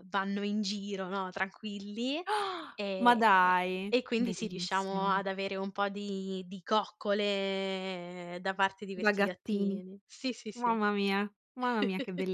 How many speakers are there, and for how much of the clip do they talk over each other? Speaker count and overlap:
two, about 20%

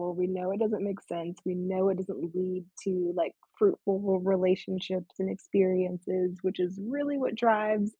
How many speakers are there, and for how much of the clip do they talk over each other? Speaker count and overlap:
one, no overlap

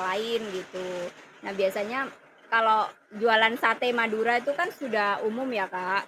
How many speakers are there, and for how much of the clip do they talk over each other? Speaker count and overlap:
one, no overlap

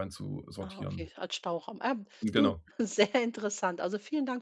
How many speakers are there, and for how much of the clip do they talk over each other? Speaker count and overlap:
two, about 14%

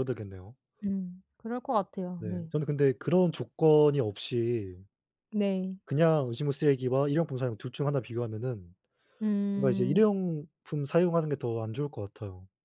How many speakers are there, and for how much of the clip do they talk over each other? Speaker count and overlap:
two, about 5%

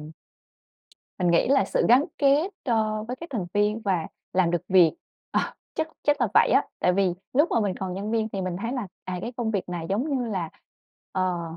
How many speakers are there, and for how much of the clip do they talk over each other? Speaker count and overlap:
one, no overlap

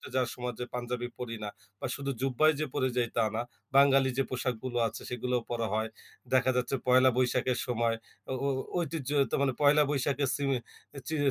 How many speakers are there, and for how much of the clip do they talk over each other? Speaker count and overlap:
one, no overlap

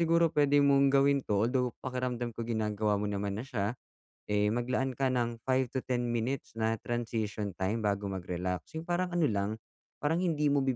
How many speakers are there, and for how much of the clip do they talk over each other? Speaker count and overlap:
one, no overlap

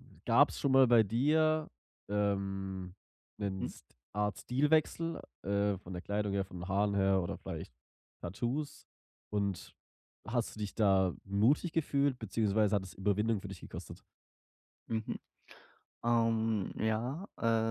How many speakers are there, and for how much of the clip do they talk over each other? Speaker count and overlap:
two, under 1%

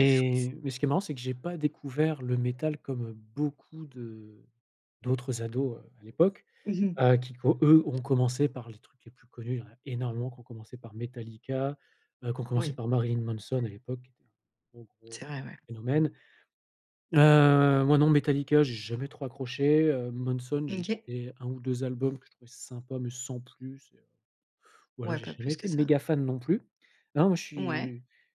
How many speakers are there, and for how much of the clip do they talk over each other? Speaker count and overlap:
two, about 7%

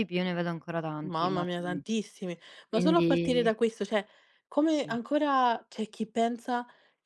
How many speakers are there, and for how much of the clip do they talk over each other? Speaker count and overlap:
two, about 24%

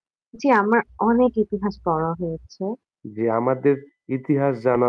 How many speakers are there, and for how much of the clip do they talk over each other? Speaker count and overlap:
two, no overlap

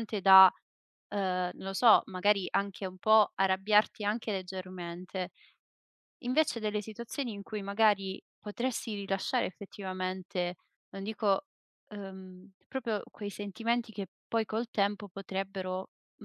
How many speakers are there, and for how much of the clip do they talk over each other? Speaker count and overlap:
one, no overlap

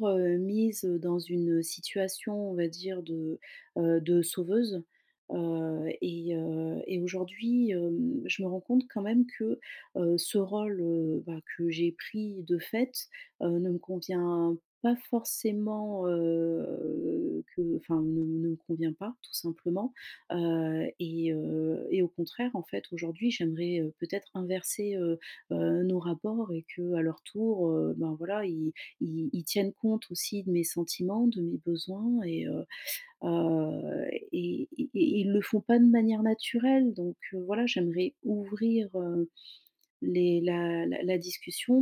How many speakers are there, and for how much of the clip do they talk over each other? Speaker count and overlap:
one, no overlap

